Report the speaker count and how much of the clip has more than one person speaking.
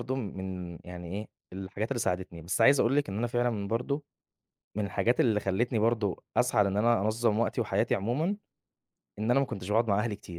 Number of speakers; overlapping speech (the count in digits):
1, no overlap